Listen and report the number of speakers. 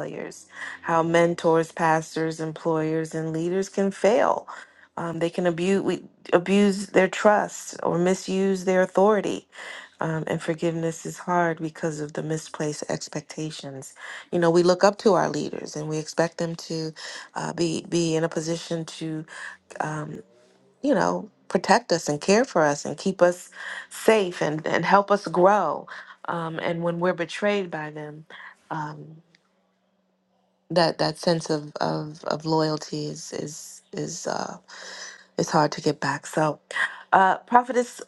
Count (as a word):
one